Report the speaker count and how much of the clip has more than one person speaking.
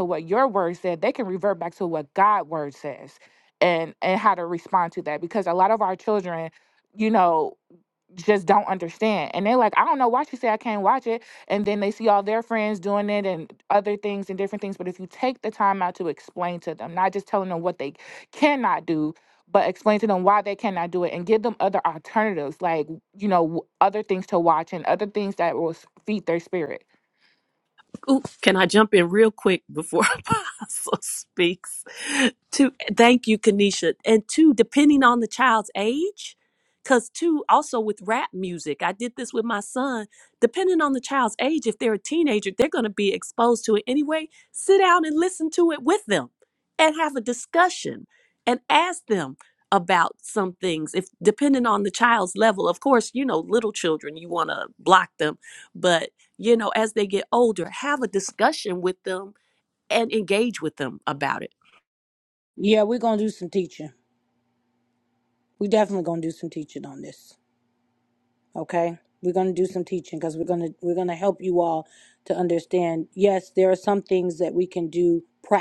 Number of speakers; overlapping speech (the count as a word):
three, no overlap